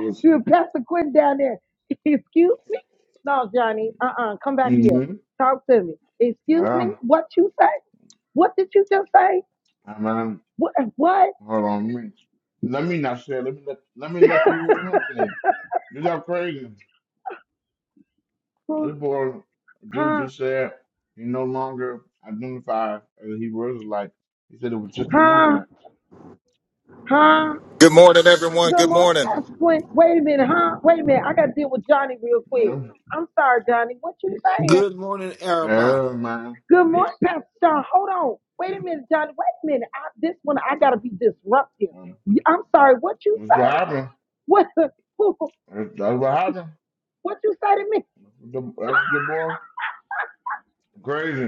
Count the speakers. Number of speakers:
4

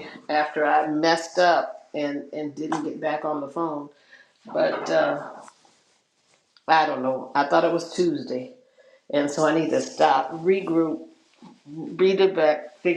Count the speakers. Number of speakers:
1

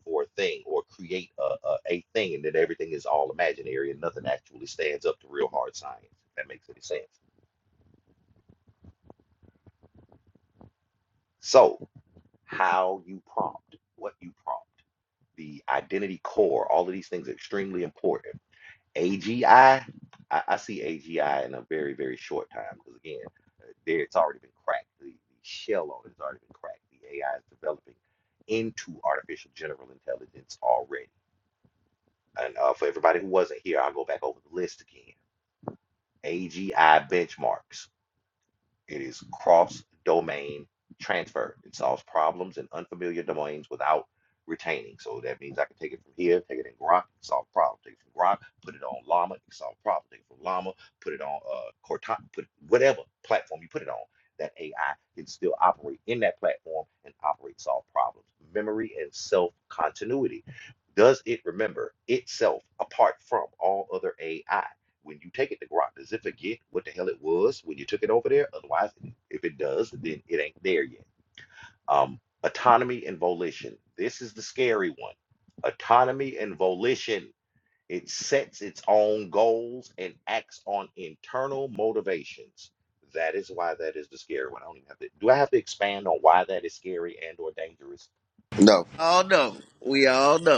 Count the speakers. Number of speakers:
2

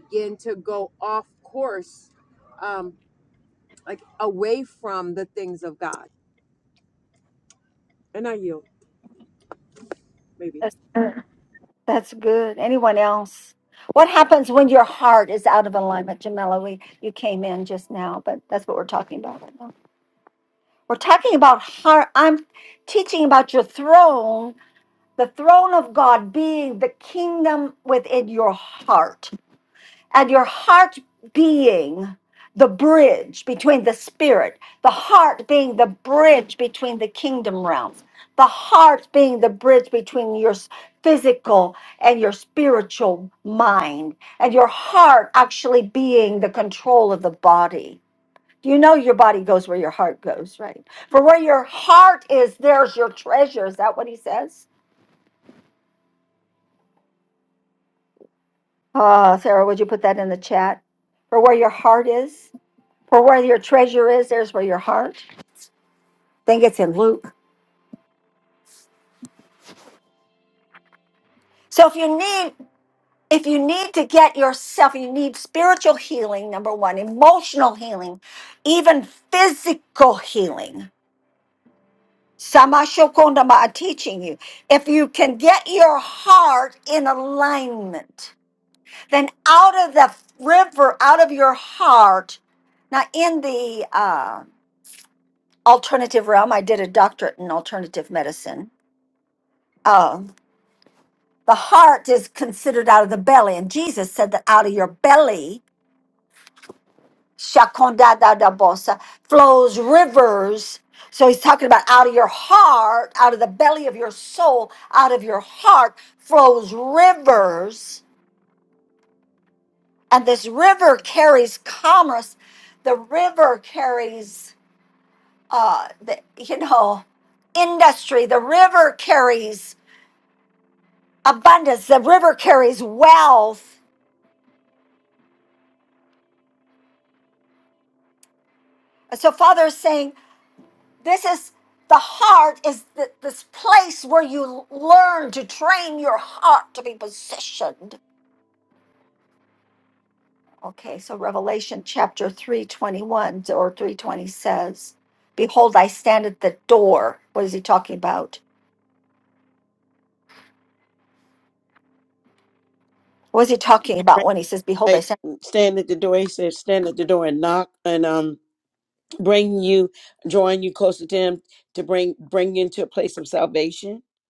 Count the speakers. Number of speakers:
3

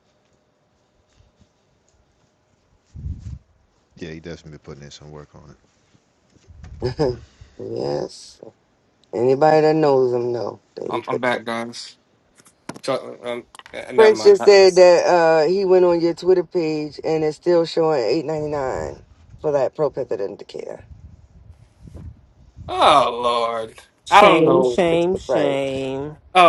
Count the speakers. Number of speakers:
4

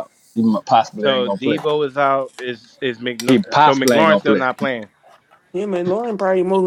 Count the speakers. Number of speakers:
3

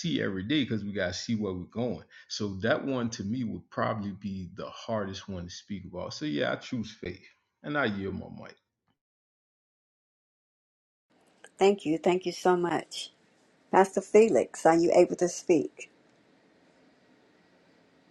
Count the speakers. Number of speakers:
2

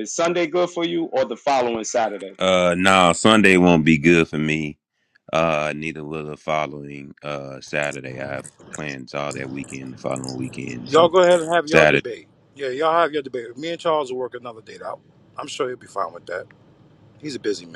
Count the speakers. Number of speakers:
3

